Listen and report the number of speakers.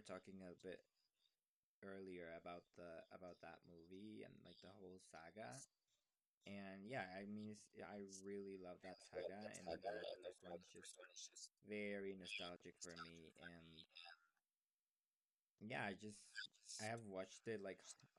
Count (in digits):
1